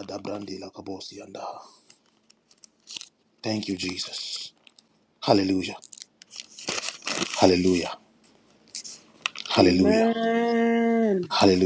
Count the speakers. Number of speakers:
2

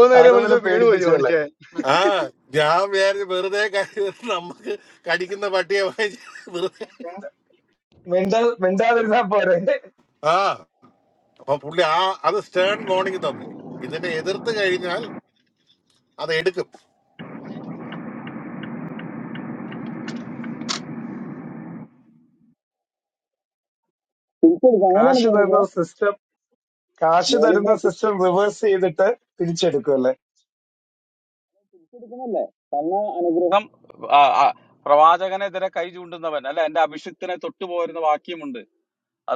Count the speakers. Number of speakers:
4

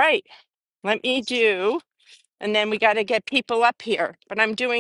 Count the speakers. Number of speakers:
1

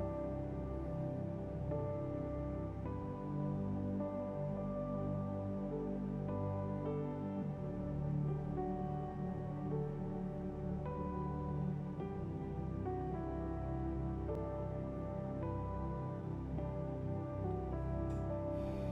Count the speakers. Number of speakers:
0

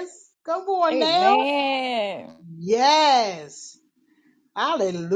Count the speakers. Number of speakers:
2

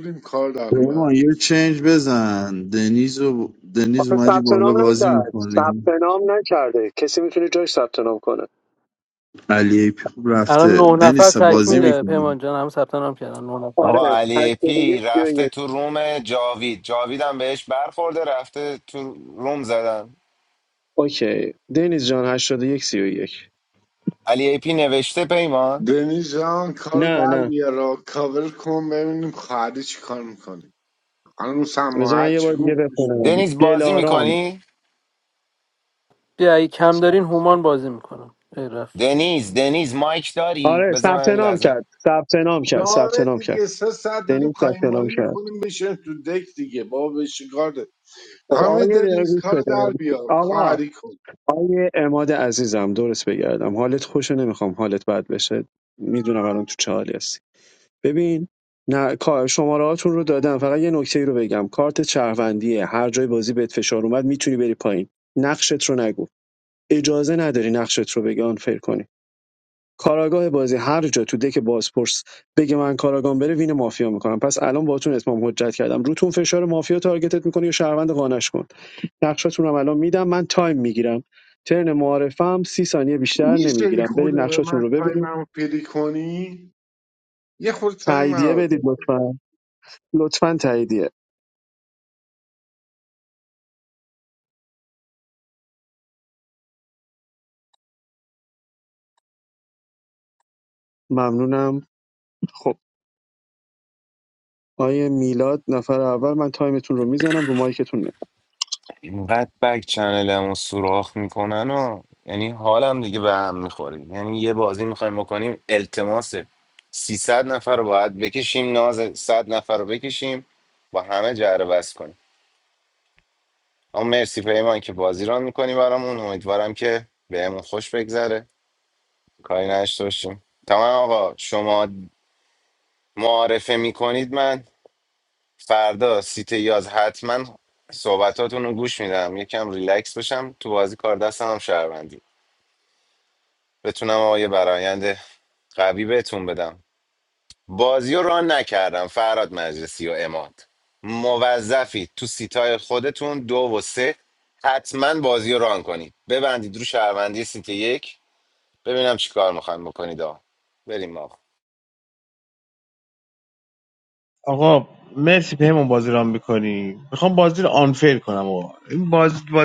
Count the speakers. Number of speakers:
6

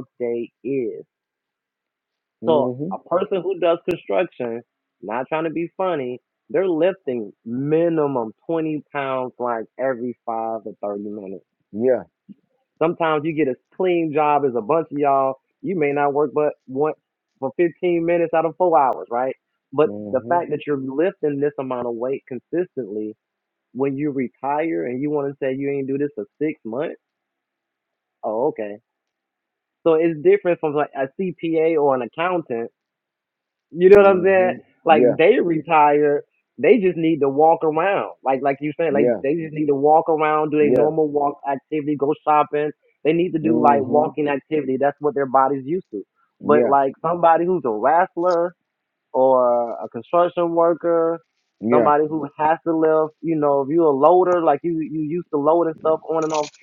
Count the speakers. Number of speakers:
2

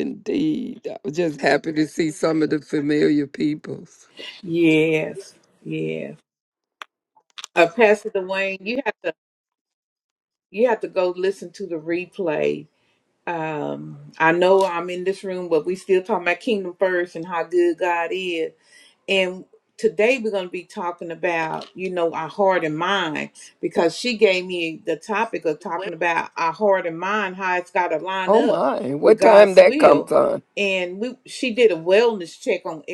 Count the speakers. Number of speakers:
2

